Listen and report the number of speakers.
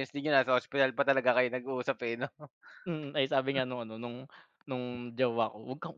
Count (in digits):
2